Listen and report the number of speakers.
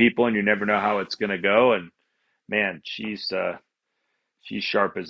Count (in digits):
1